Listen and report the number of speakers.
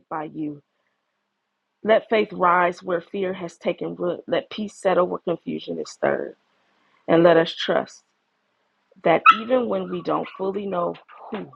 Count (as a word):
one